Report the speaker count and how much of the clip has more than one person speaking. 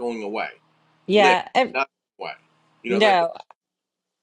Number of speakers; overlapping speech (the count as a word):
two, about 11%